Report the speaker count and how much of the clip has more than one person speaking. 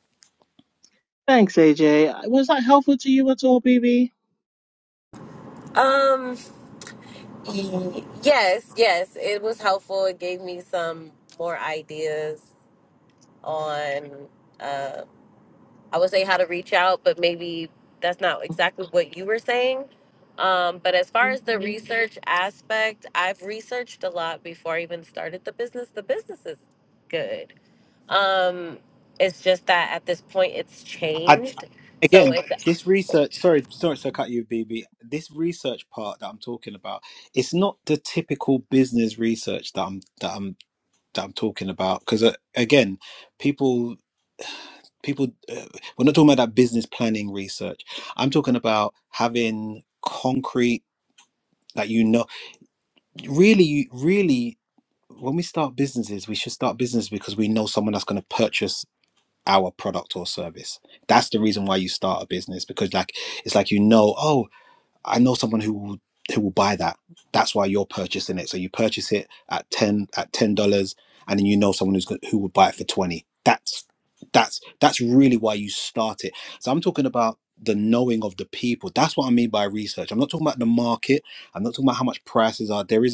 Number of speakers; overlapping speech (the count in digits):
3, about 1%